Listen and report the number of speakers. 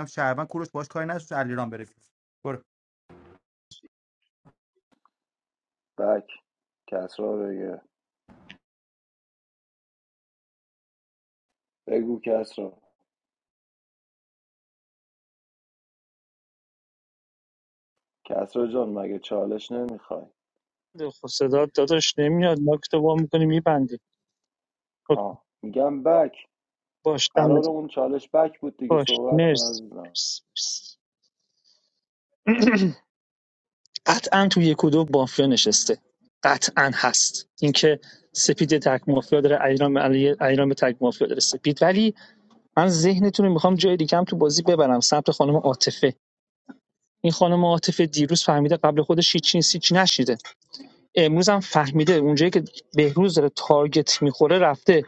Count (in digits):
3